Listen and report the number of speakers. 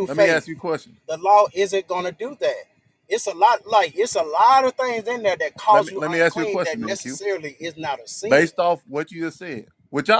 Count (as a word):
two